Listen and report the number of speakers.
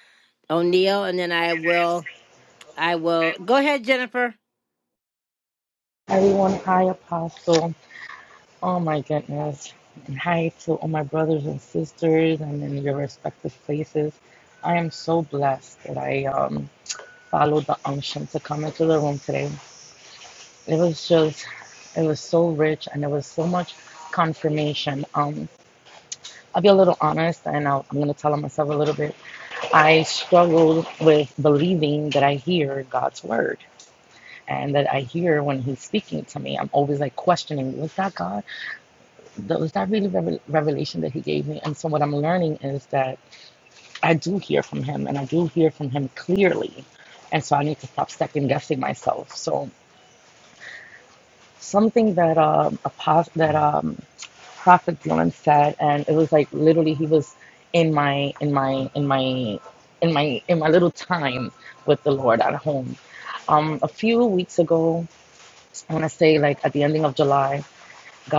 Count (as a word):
two